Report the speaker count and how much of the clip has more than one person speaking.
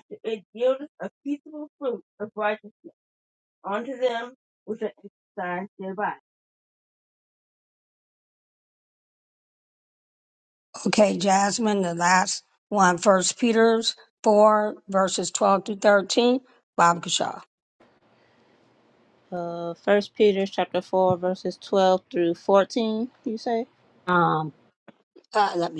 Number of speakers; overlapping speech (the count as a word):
three, no overlap